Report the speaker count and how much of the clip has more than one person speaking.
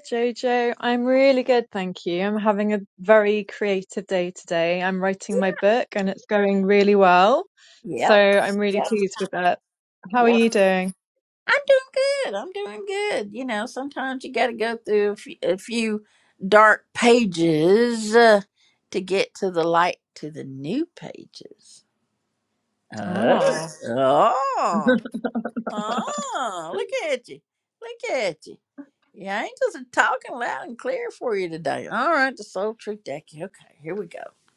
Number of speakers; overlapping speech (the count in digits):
2, about 3%